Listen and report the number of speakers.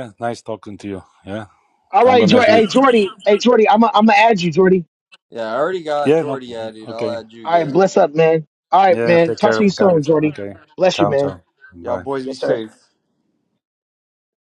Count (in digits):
3